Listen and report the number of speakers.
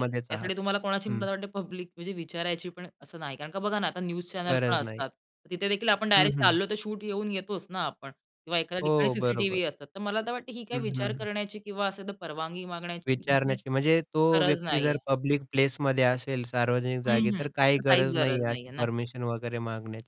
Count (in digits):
2